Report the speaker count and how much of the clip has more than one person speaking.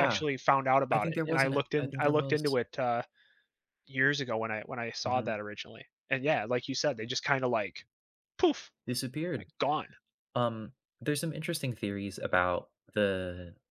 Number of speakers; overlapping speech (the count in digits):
2, about 16%